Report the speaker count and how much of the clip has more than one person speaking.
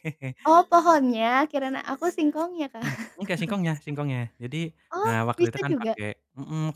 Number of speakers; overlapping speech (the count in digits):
2, about 14%